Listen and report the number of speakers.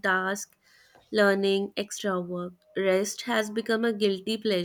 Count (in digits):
1